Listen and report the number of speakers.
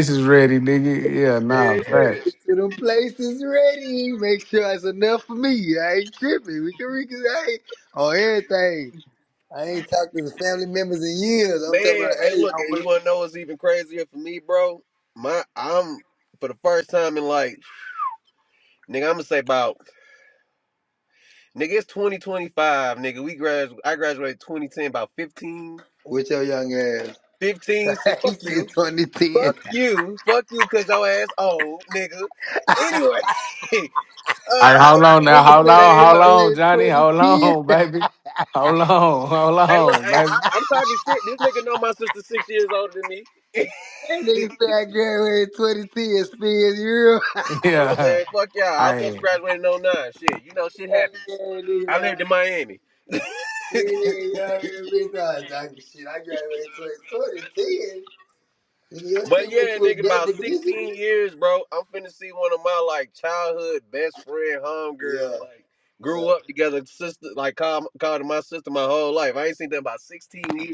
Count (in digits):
3